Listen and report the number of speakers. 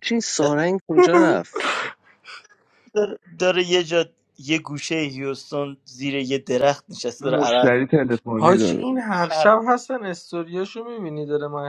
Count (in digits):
4